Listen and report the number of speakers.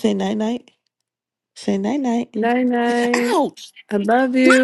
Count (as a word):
two